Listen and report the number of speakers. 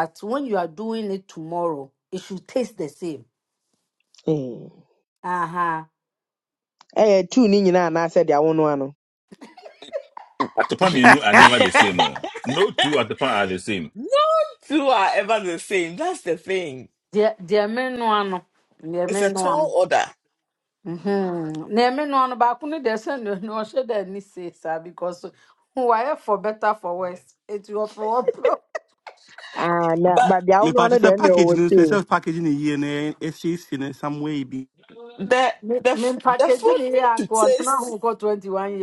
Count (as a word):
five